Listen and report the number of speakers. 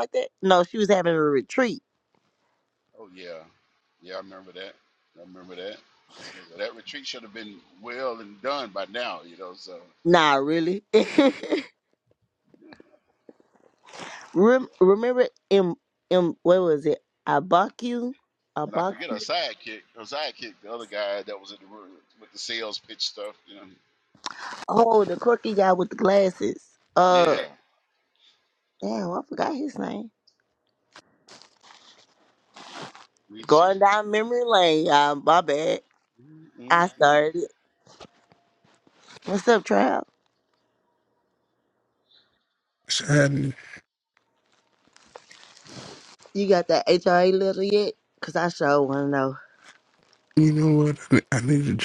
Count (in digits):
3